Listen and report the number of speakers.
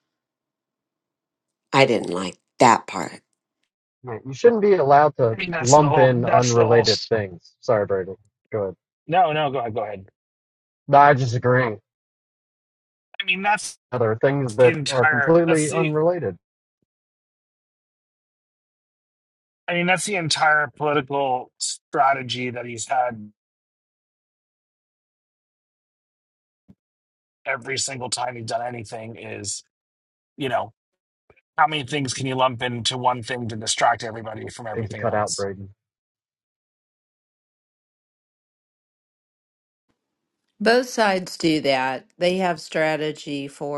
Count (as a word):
four